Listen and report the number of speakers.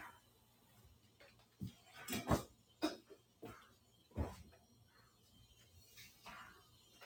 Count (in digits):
0